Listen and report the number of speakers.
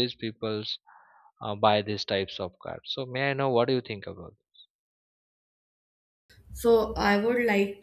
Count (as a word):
two